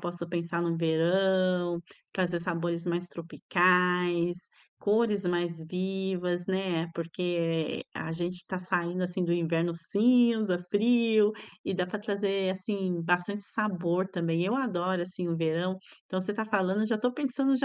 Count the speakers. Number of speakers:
one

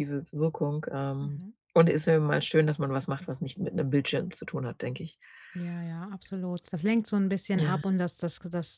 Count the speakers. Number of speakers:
two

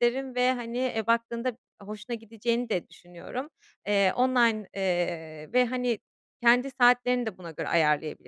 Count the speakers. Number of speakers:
one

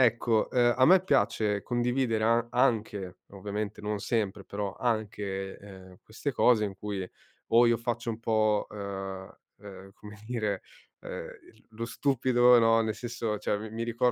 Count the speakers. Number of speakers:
one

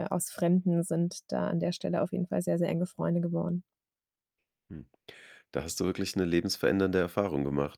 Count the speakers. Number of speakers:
two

